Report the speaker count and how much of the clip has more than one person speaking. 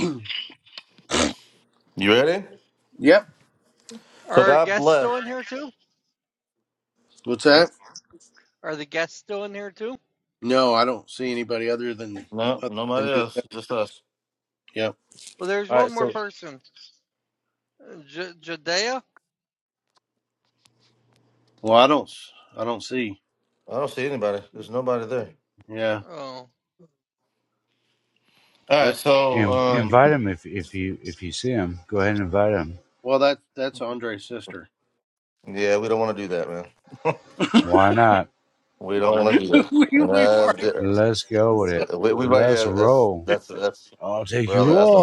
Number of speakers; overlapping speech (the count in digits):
4, about 11%